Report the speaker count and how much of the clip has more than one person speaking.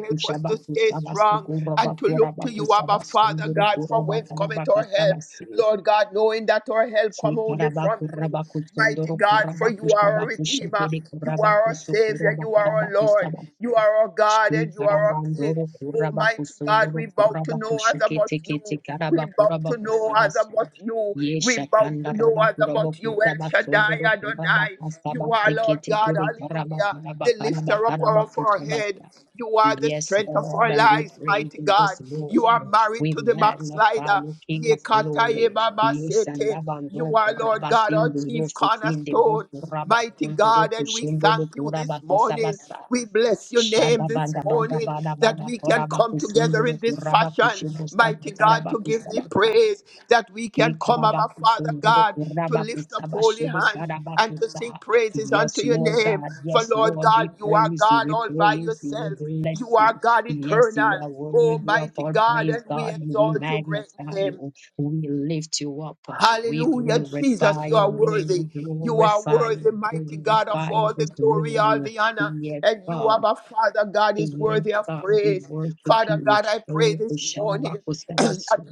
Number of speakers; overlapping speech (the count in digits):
2, about 70%